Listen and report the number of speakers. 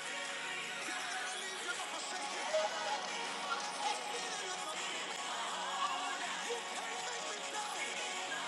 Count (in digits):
0